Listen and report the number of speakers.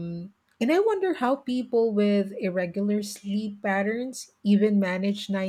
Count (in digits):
1